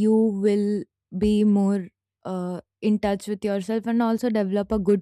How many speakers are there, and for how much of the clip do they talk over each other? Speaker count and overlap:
1, no overlap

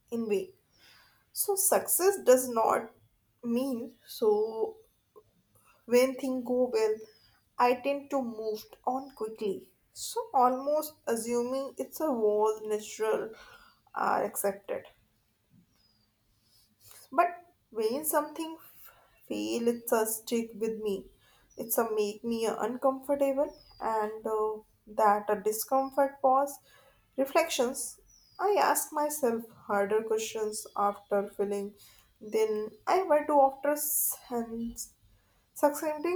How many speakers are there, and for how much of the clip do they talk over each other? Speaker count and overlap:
1, no overlap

